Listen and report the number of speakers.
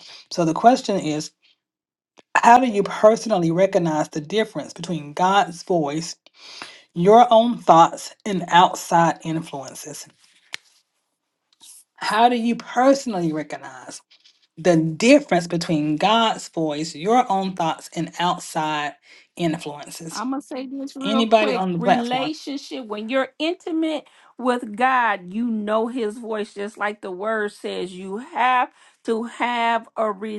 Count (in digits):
2